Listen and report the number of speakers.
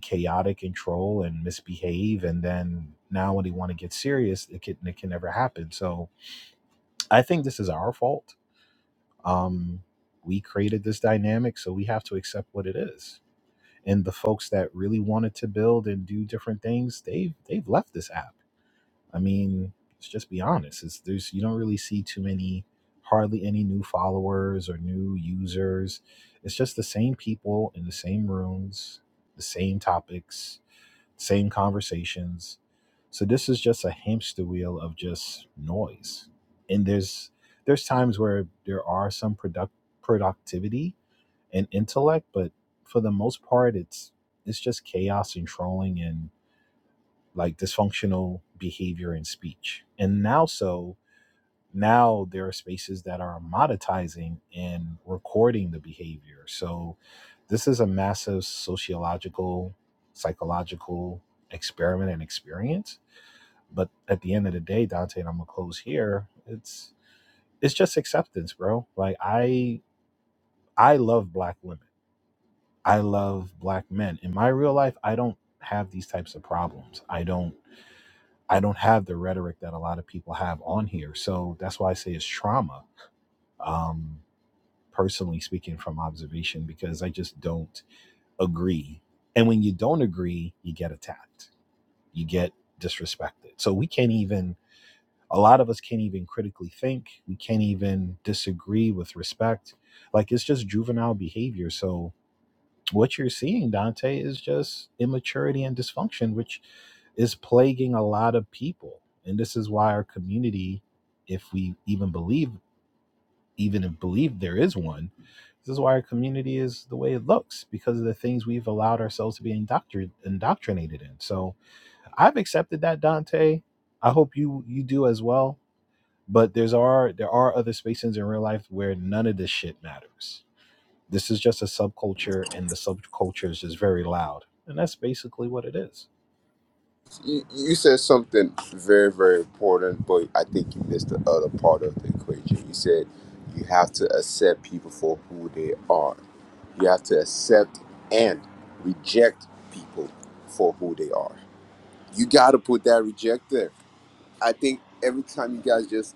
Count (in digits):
2